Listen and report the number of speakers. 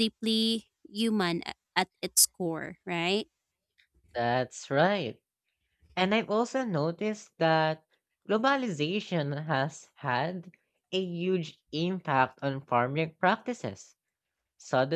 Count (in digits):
2